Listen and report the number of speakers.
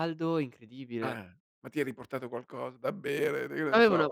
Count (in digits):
2